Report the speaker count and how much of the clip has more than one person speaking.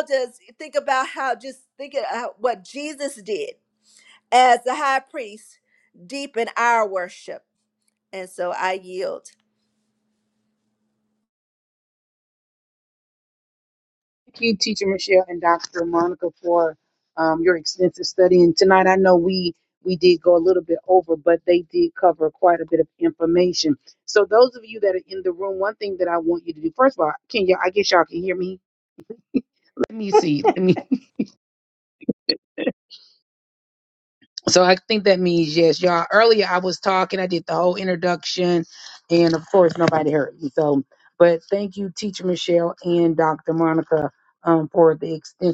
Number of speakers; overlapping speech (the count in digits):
2, no overlap